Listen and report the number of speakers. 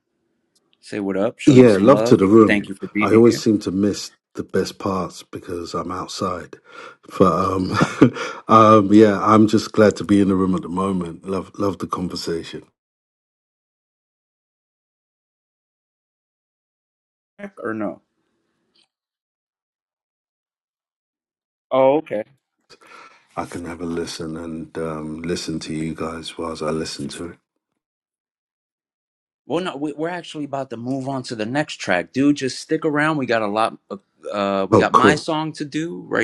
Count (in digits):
2